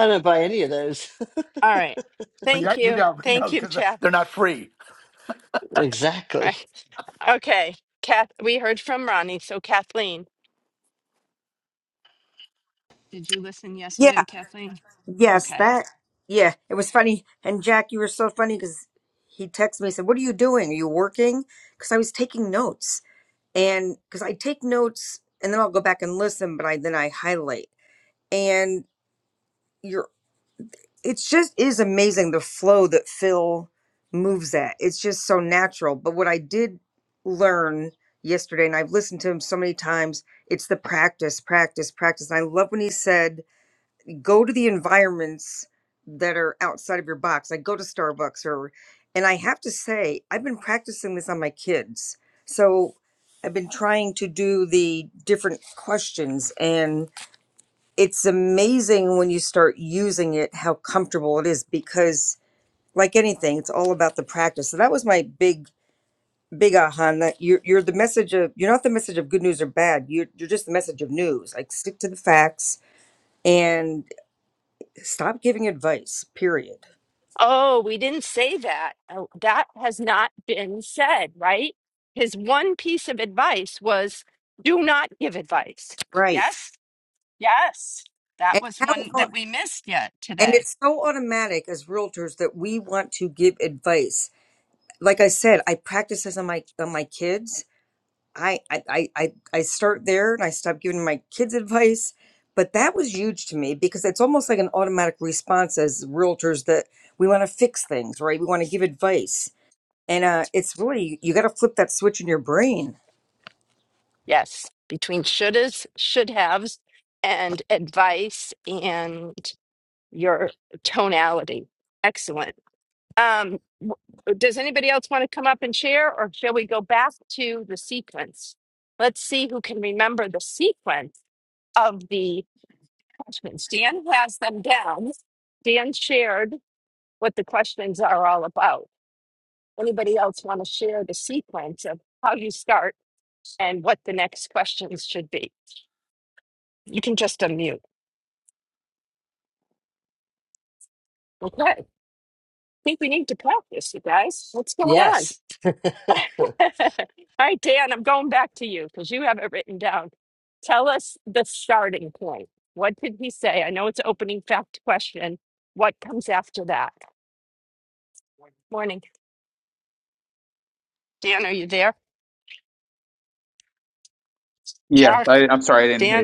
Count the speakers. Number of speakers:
5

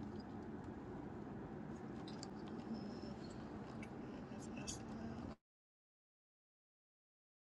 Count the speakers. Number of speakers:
0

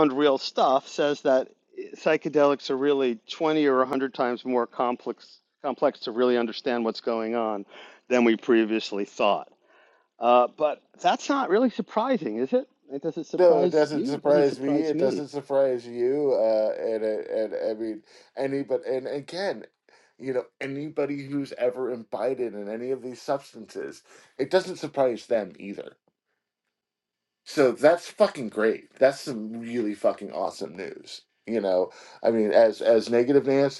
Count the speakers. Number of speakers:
2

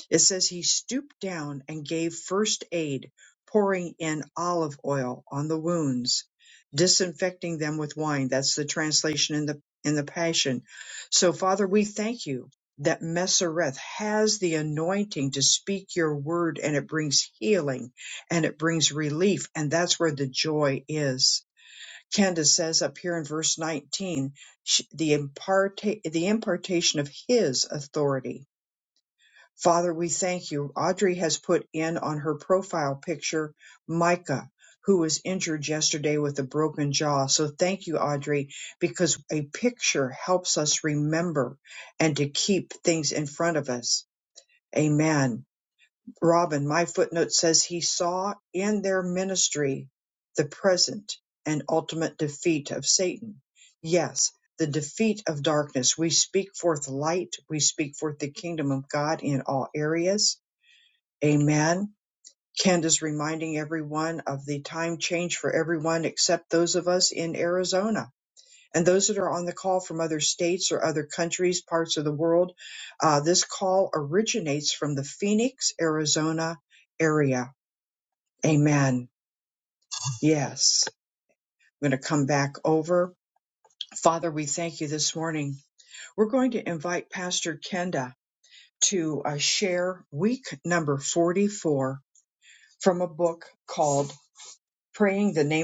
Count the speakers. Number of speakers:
1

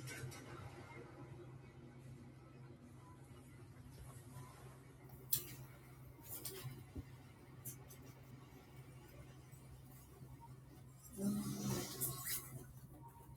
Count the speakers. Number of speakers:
0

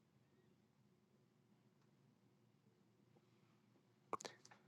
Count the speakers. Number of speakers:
0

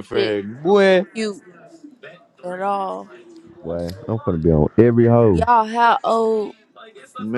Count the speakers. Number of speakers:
3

